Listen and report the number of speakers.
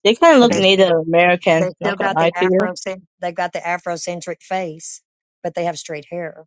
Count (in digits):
2